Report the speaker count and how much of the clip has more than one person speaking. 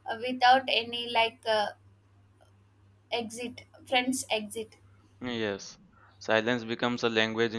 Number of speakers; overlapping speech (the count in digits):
2, no overlap